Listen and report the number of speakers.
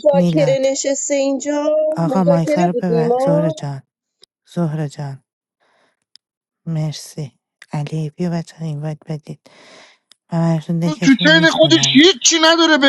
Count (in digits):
3